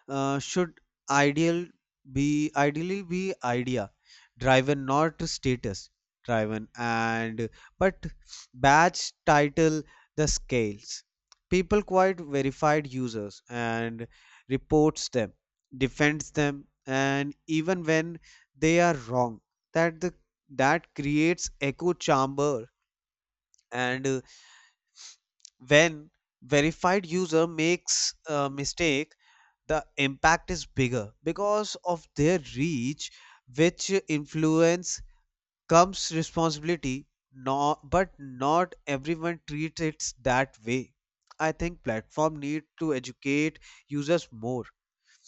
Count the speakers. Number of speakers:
1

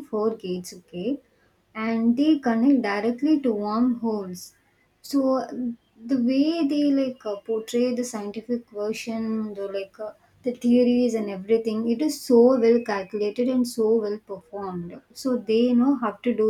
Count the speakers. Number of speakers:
1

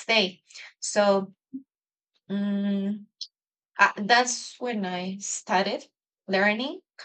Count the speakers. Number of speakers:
1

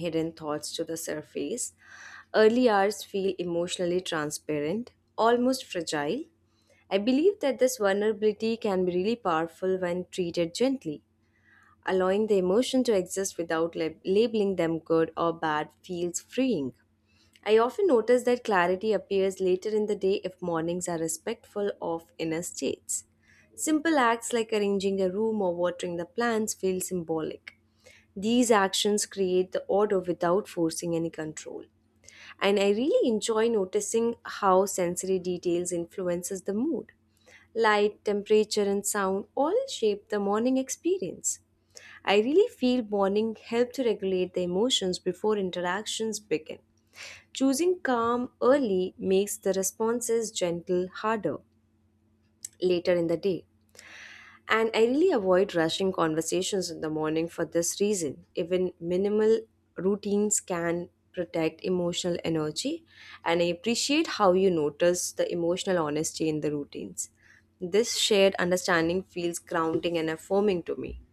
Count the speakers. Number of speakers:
1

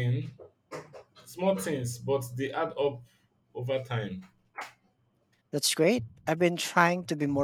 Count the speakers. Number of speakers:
2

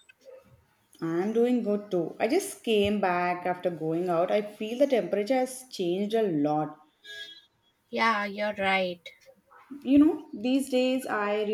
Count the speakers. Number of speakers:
2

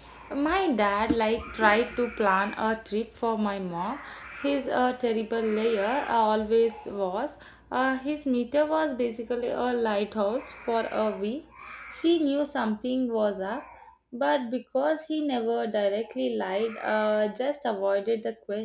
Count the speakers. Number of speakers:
1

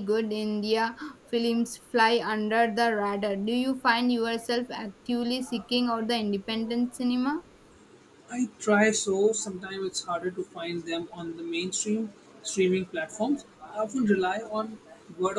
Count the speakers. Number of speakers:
2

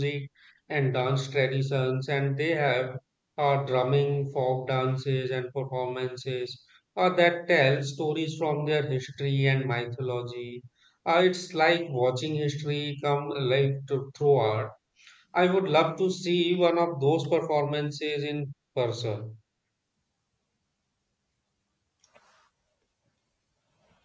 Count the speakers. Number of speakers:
1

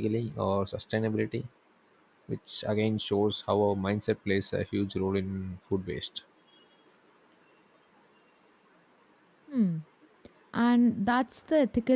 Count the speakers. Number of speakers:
2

